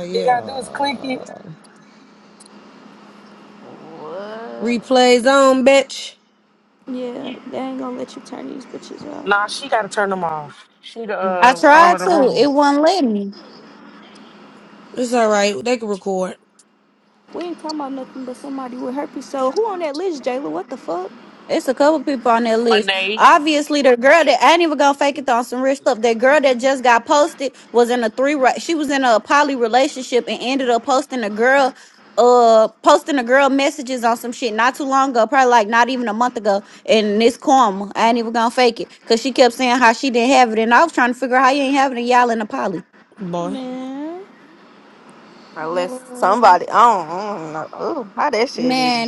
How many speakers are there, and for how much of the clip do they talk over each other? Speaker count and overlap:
five, about 6%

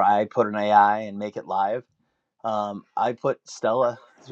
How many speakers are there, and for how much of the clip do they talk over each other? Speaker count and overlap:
one, no overlap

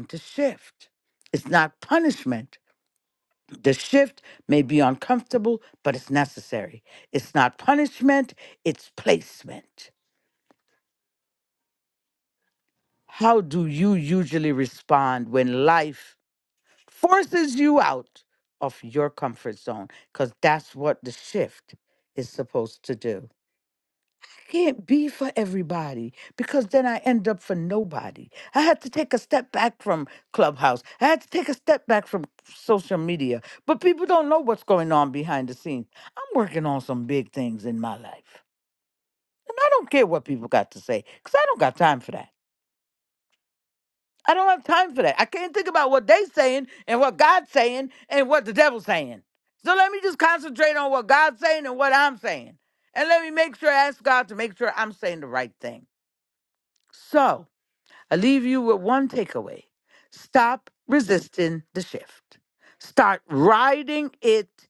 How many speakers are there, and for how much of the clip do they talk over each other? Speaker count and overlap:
one, no overlap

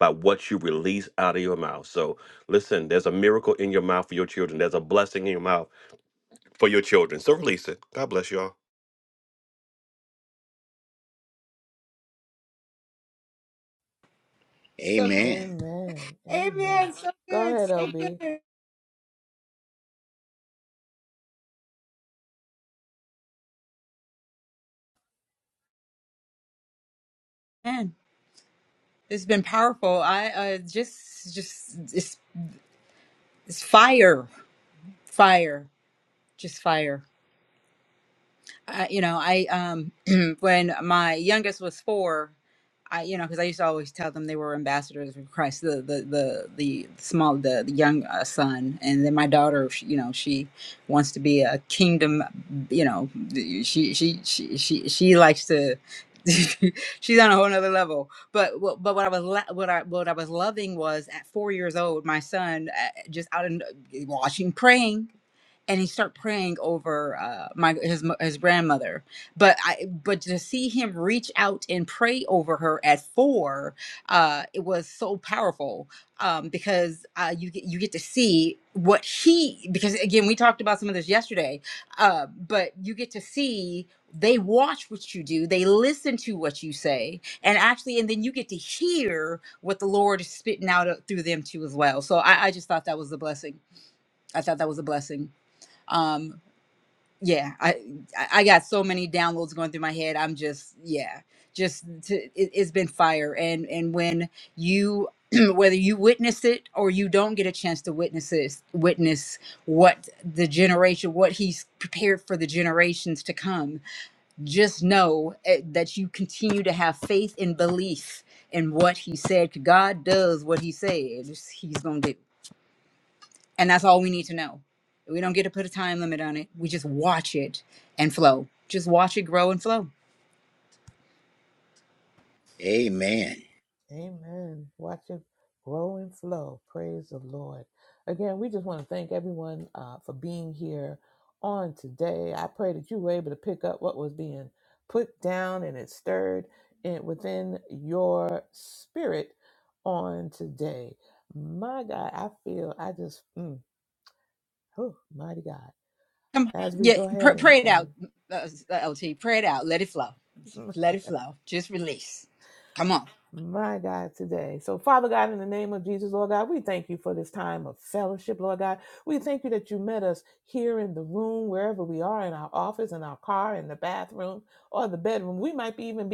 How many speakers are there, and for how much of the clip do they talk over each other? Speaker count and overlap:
four, about 2%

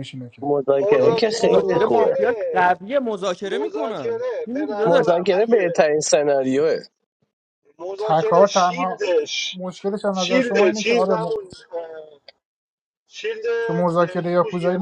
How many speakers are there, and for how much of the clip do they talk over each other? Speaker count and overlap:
four, about 48%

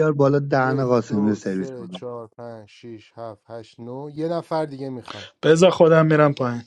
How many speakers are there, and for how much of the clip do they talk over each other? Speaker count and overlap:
three, about 20%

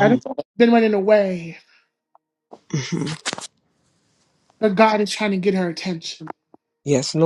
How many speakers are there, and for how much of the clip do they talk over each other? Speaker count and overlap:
two, about 3%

